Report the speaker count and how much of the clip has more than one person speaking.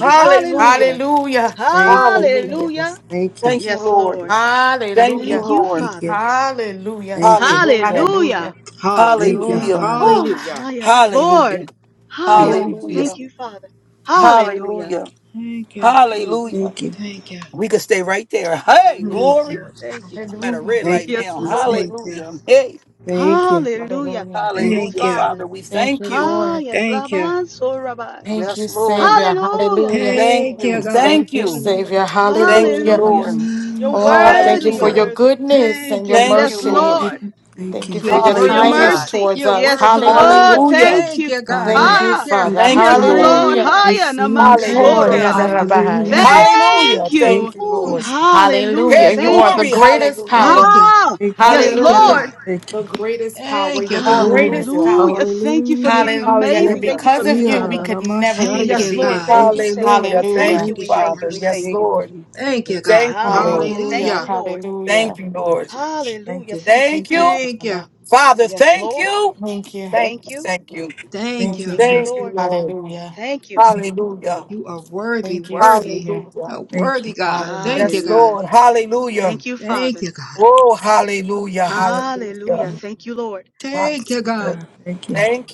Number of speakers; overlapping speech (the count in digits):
5, about 68%